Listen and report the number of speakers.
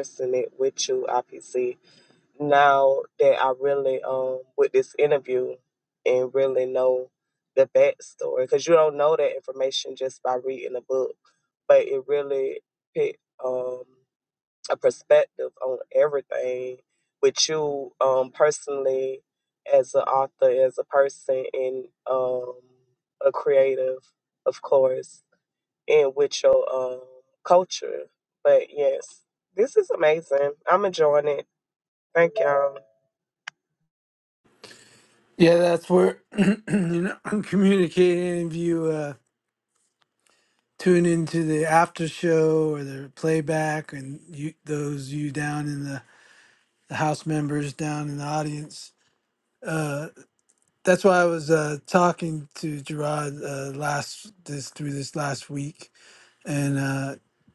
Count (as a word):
two